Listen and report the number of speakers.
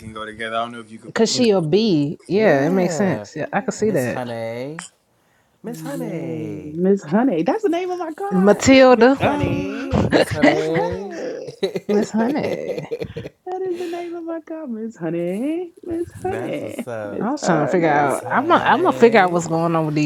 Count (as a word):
four